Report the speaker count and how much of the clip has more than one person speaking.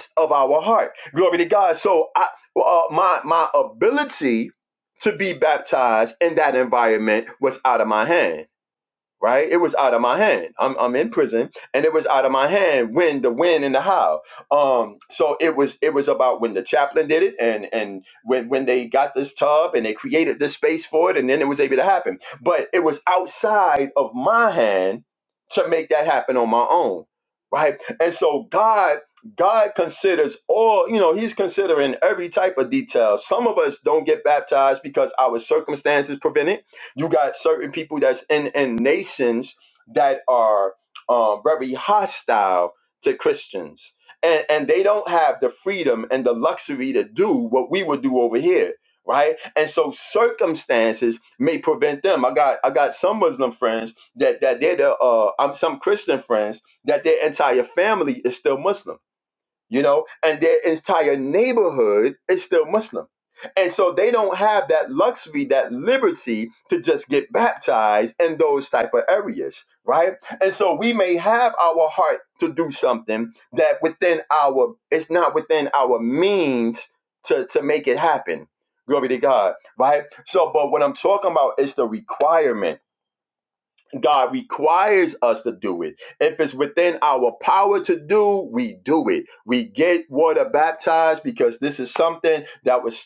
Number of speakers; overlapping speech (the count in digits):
1, no overlap